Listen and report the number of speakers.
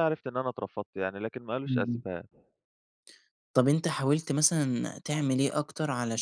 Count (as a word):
two